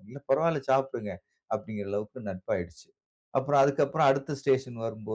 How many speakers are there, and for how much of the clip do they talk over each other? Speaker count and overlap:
one, no overlap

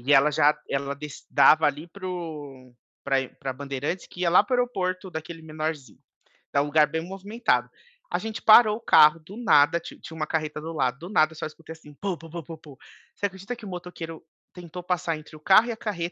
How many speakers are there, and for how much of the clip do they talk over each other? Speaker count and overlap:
one, no overlap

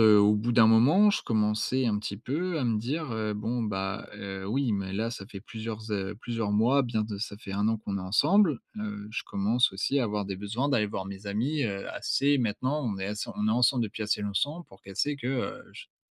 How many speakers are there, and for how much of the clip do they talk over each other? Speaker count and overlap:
one, no overlap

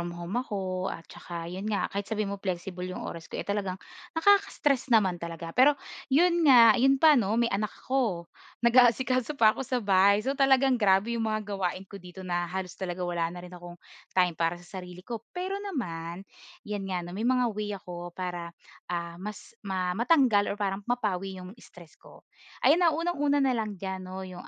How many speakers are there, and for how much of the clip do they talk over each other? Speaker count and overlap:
one, no overlap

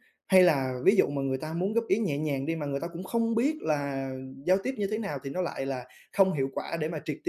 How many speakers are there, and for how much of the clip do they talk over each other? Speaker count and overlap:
one, no overlap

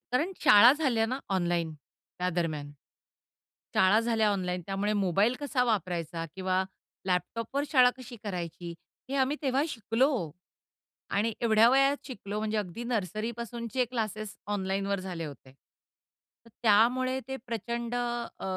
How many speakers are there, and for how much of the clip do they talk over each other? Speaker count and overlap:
one, no overlap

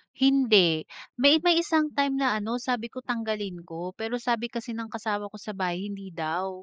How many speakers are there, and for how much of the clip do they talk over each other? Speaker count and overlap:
one, no overlap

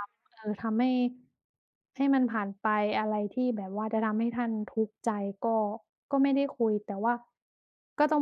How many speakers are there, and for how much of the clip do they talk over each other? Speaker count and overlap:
one, no overlap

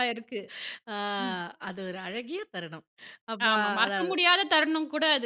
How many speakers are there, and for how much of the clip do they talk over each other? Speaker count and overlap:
two, about 14%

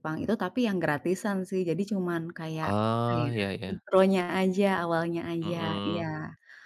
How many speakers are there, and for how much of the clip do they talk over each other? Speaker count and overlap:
two, about 16%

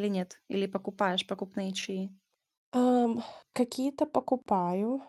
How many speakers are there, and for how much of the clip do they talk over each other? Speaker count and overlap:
two, no overlap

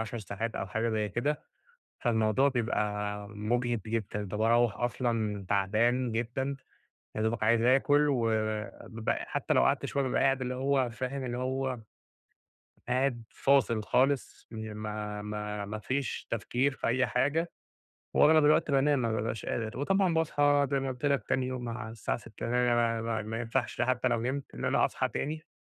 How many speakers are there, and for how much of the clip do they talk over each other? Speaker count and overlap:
one, no overlap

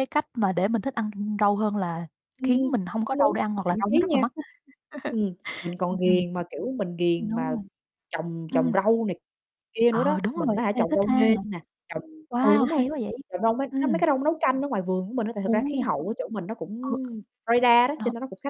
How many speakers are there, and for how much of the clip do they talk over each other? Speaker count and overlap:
two, about 26%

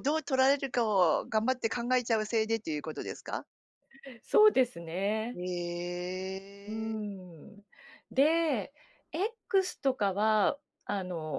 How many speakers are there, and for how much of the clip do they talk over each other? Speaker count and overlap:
two, under 1%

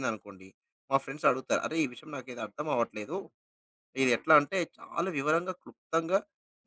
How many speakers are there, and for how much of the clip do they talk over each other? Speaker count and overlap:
one, no overlap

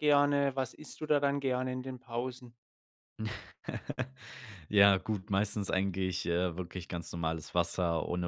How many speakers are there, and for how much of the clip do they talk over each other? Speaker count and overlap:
two, no overlap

